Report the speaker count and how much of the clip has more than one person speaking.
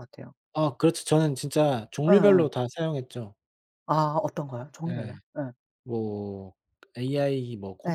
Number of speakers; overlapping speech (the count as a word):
two, about 8%